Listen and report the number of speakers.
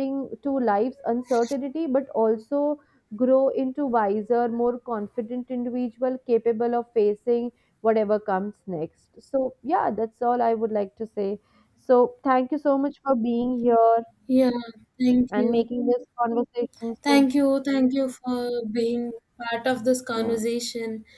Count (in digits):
2